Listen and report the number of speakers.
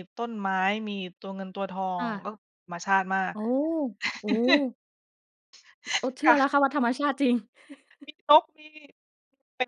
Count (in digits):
2